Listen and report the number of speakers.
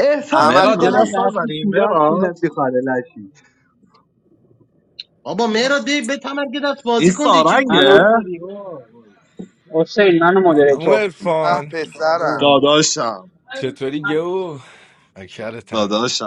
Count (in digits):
6